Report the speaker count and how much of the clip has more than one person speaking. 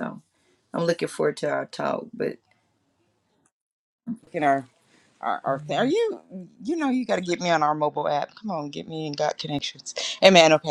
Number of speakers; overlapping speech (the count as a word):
two, no overlap